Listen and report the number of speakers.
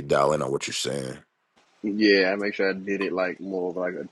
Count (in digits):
2